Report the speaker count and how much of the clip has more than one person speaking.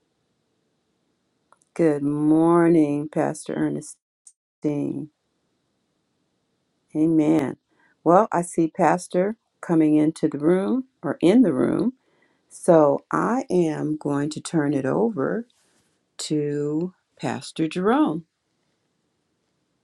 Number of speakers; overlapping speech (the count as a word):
one, no overlap